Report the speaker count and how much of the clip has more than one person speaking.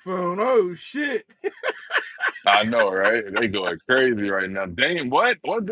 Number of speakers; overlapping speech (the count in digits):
2, no overlap